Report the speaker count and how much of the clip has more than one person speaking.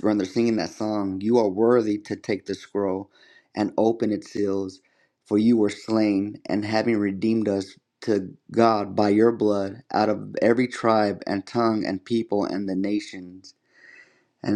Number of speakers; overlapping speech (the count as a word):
one, no overlap